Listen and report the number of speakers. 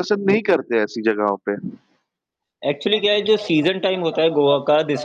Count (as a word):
two